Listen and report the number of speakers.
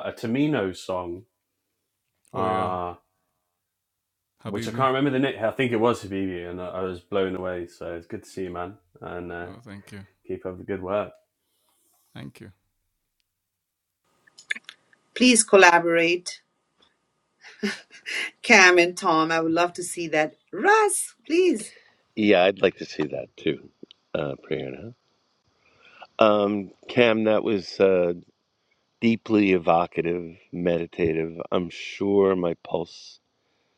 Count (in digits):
4